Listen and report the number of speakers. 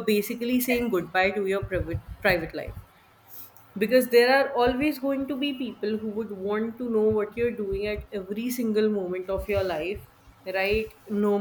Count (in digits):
1